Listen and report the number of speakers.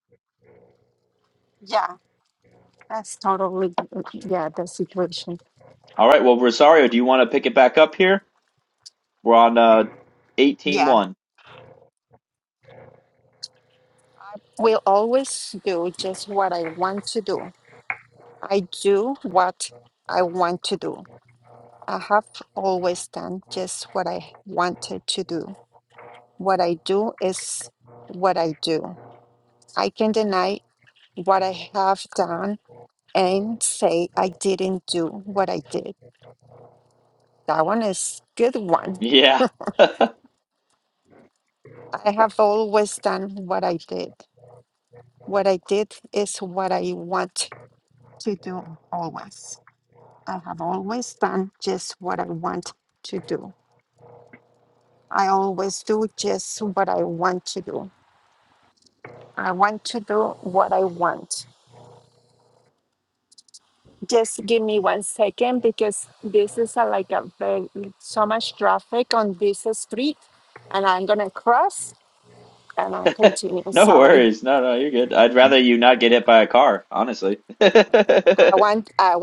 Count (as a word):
two